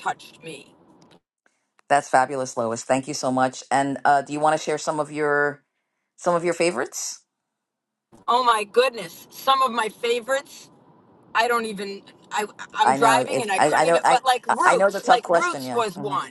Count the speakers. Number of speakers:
two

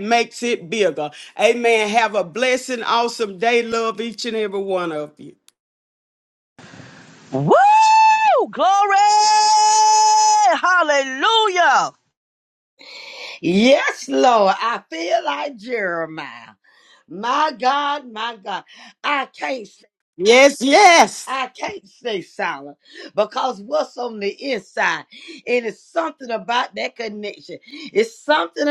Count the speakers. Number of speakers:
three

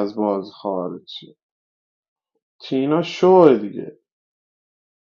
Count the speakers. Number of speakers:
one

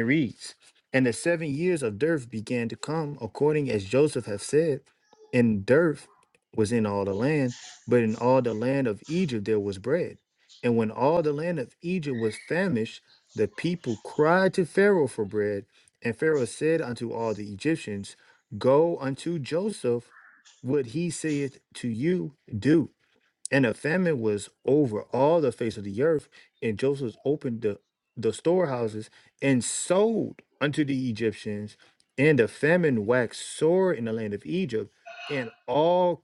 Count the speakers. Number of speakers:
one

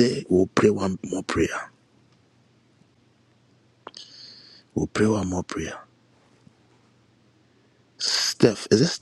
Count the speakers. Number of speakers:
one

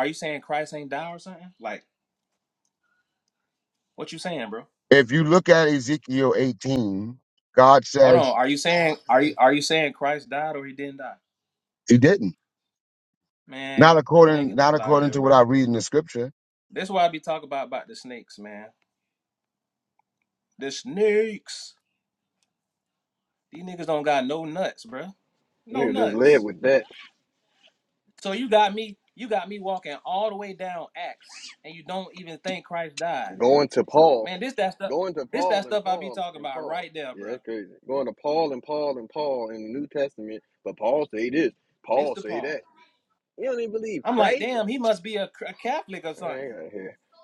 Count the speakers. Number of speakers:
three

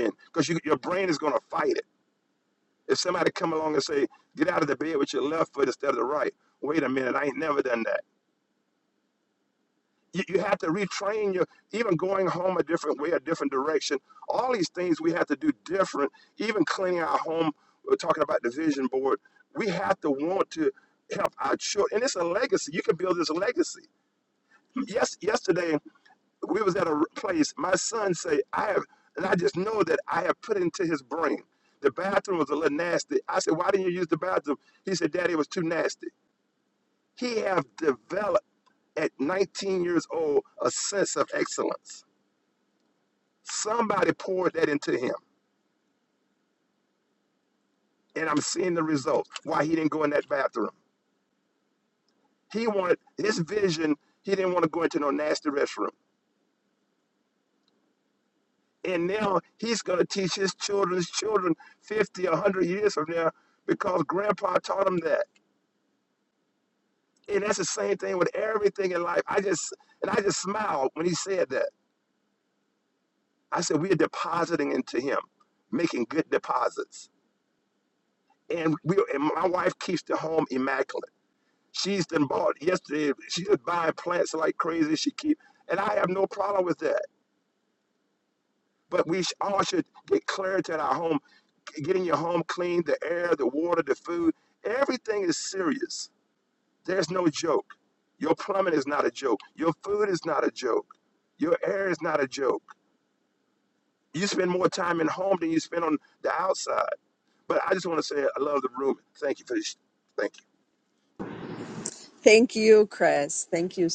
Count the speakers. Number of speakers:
two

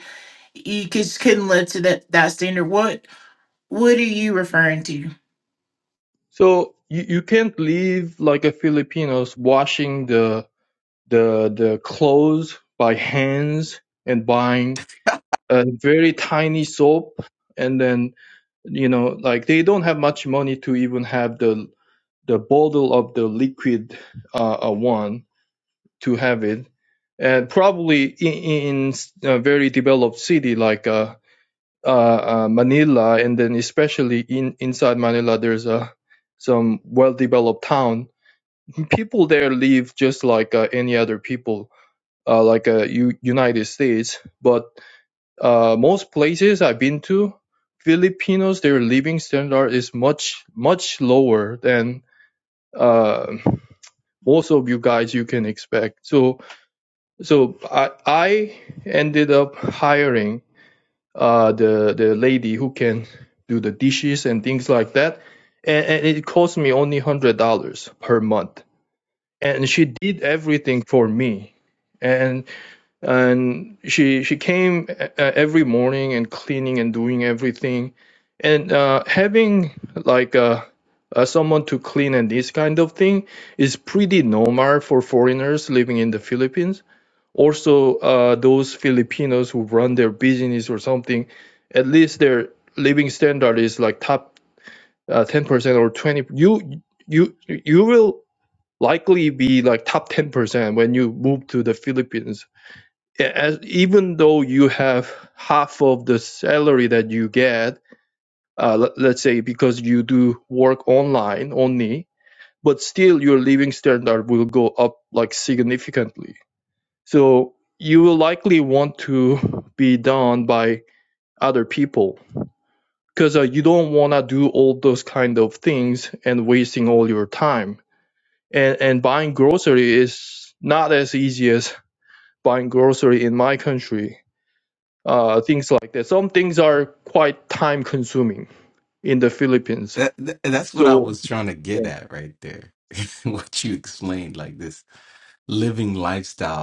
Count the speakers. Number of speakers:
three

